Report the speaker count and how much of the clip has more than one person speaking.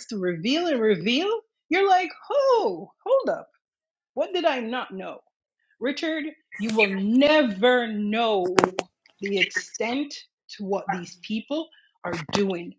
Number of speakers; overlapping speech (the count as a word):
one, no overlap